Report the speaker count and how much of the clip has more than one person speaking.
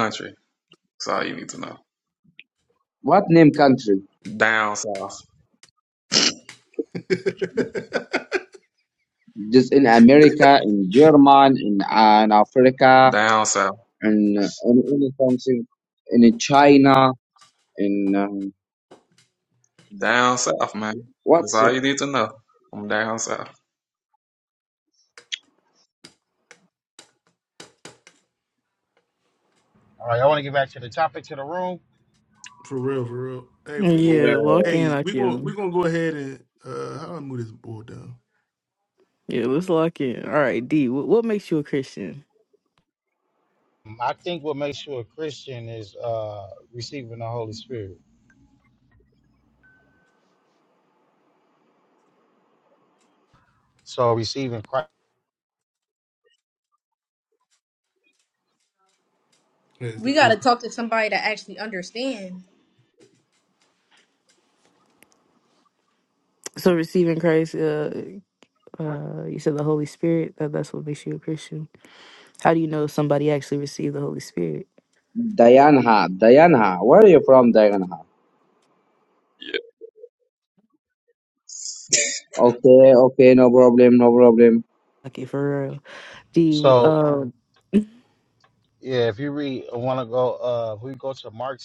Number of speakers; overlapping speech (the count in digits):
6, about 3%